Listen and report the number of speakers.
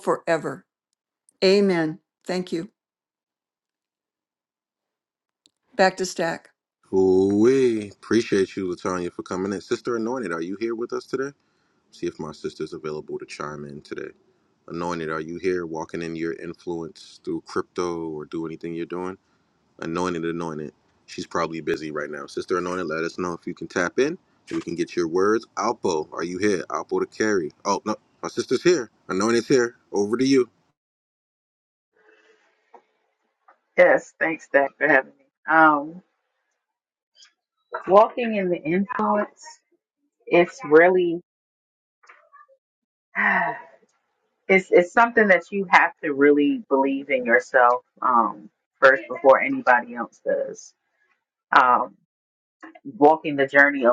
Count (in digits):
3